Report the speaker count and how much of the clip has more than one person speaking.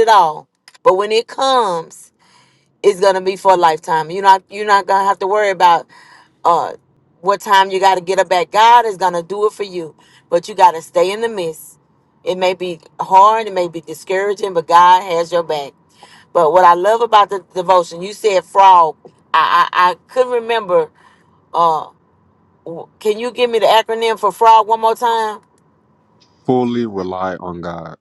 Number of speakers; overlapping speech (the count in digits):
2, no overlap